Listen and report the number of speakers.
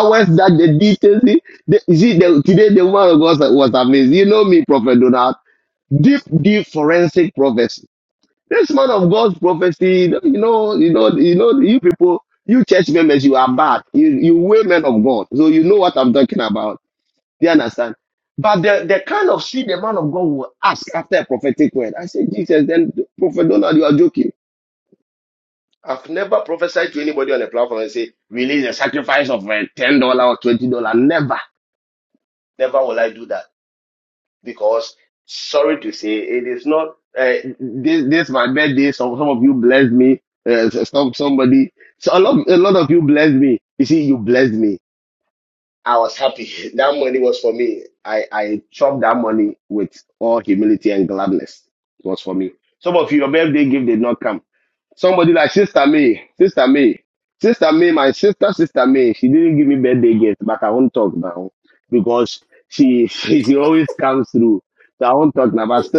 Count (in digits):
1